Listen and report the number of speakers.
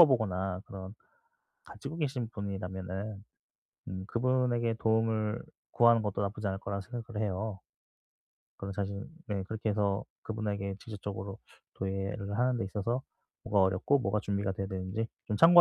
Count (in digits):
1